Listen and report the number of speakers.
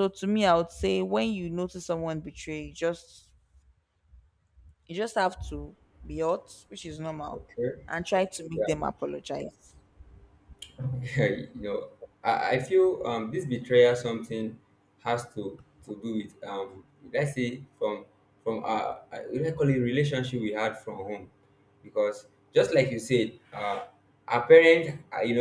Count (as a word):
two